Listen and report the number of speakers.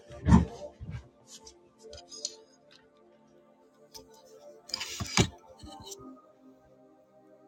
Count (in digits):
0